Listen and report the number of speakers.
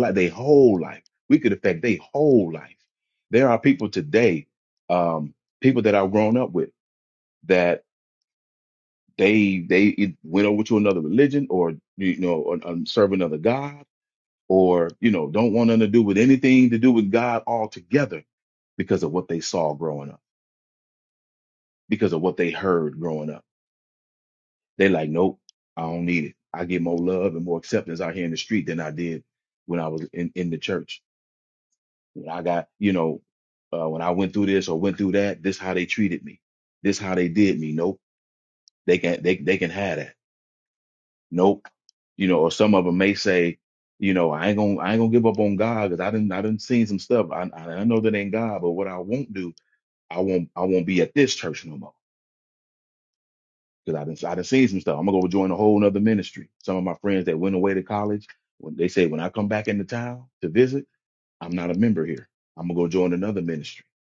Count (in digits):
1